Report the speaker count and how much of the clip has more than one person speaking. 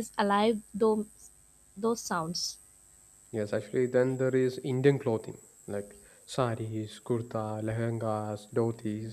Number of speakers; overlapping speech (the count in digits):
2, no overlap